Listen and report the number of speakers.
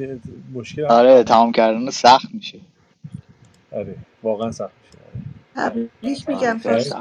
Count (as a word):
three